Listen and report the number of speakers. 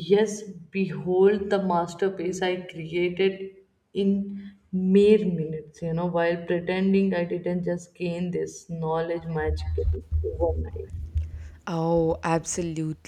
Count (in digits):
2